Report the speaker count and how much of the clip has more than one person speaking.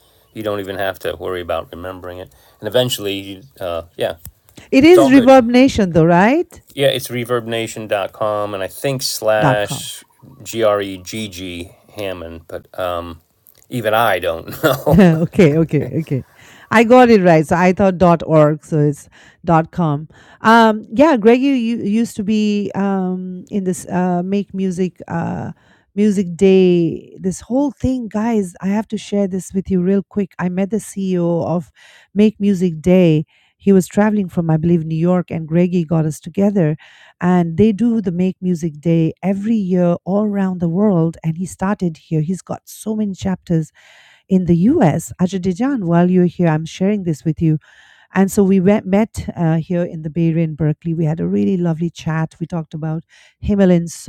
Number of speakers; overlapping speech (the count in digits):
2, about 2%